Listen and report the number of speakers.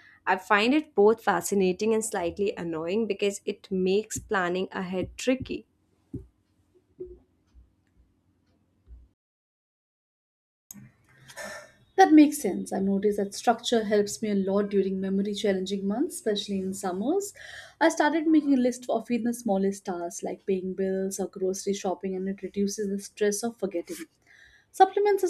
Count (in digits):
2